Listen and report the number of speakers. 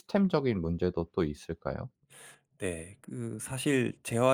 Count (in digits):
2